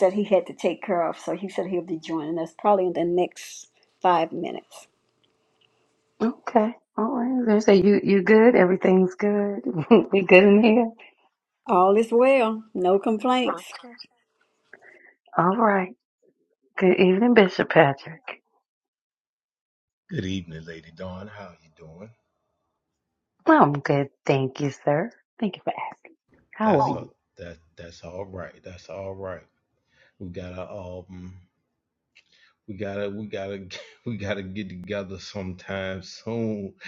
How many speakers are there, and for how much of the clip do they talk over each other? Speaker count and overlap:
three, about 1%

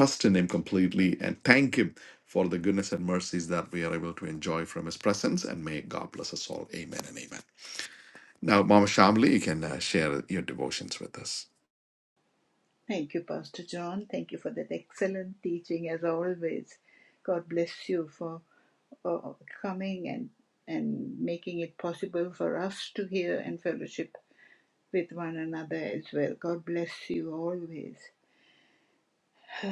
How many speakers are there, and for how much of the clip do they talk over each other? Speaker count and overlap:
two, no overlap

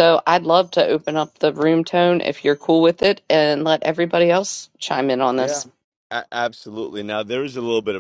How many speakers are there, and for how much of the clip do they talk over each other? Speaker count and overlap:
two, about 1%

